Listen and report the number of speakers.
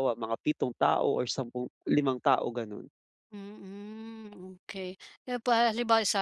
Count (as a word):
two